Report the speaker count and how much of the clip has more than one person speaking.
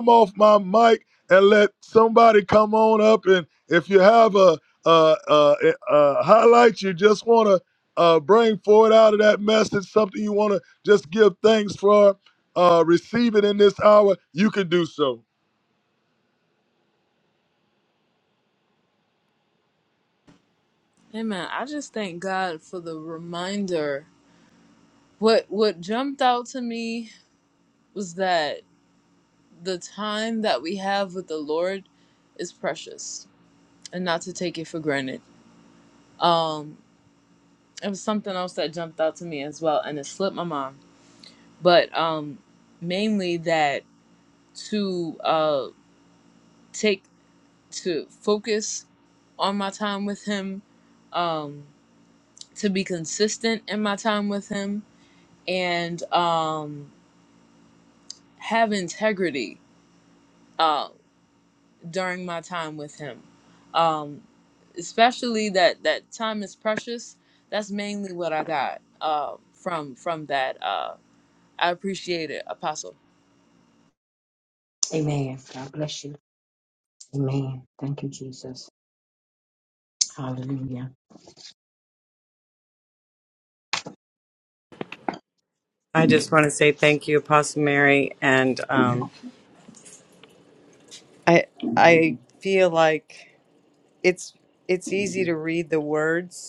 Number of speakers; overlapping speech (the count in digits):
4, no overlap